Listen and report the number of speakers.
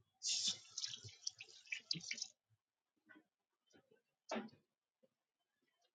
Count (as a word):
zero